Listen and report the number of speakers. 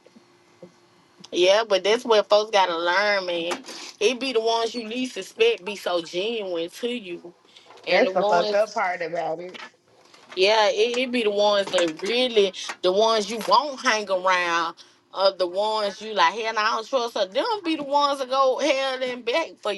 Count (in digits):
2